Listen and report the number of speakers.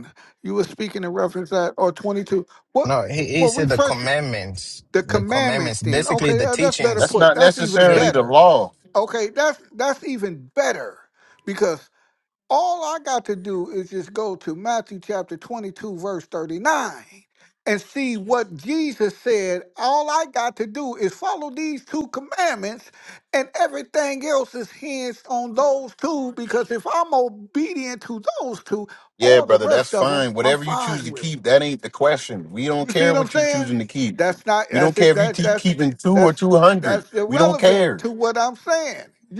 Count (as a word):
three